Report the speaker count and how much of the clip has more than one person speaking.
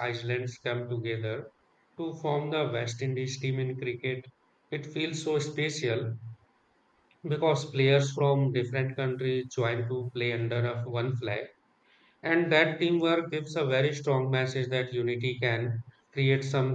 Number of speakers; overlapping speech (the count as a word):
one, no overlap